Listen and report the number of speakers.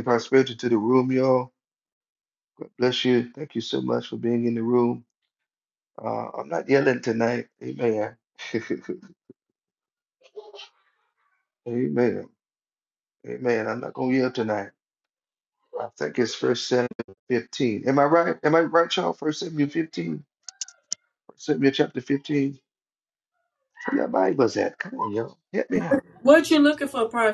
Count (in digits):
2